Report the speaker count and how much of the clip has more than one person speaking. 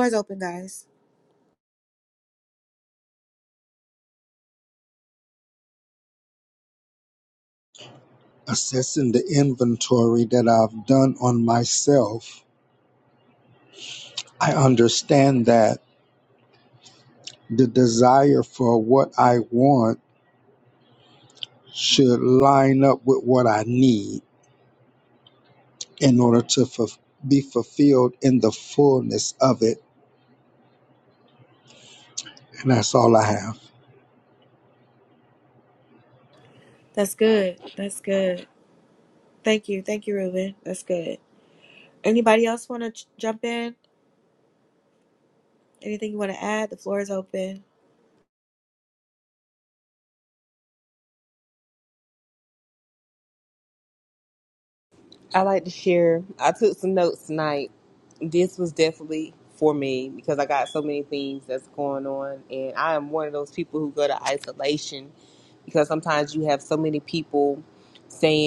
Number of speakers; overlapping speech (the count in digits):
3, no overlap